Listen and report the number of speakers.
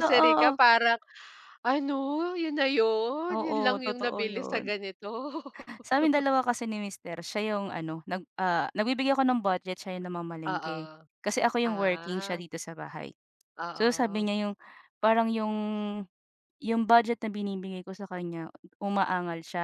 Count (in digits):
2